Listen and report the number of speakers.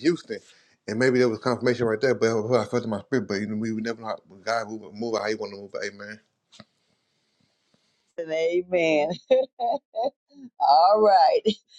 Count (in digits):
2